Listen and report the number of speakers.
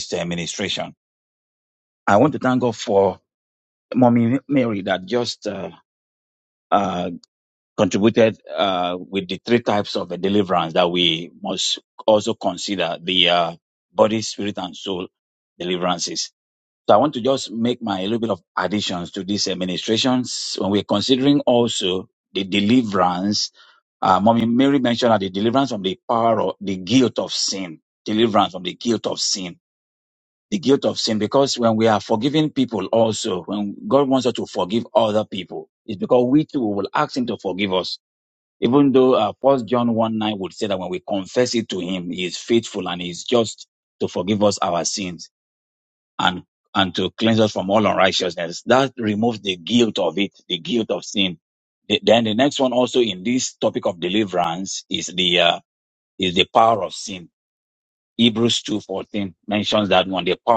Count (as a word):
one